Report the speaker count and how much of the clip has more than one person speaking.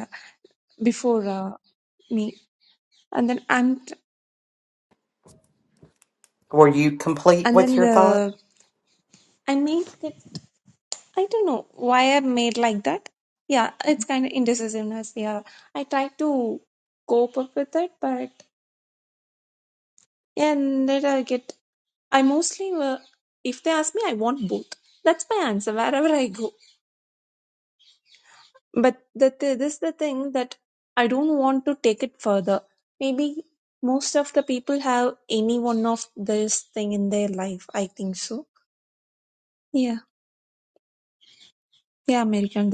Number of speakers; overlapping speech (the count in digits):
2, about 2%